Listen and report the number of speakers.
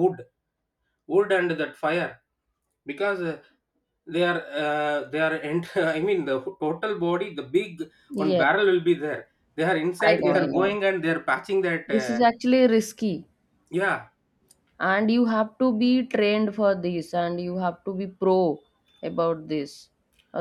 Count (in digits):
2